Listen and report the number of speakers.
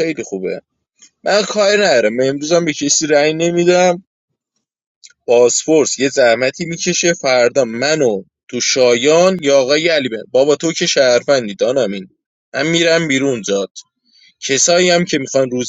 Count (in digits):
1